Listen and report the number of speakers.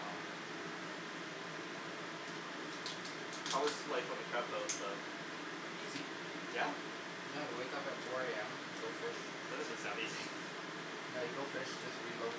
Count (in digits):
2